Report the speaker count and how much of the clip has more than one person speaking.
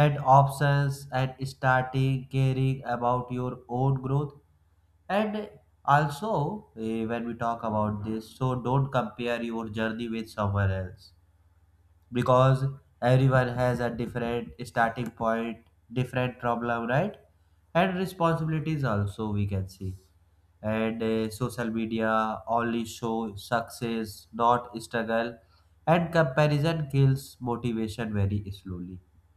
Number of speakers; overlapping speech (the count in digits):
1, no overlap